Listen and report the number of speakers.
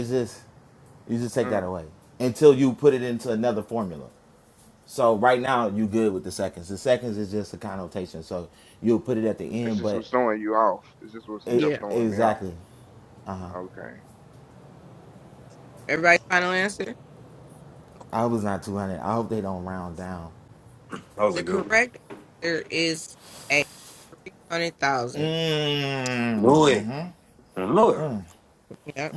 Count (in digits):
4